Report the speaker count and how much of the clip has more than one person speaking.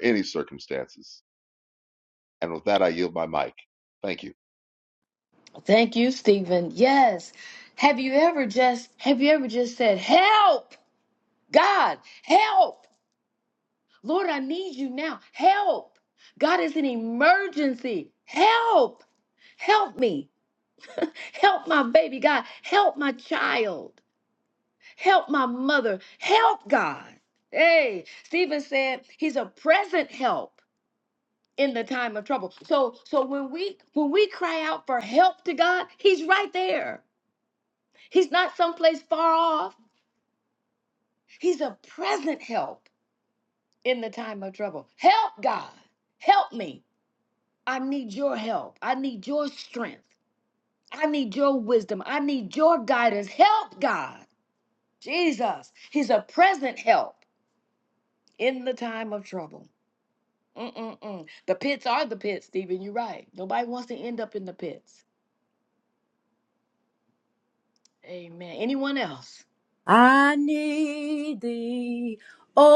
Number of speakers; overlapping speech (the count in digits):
3, no overlap